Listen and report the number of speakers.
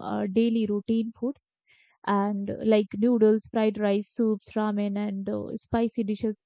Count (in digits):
1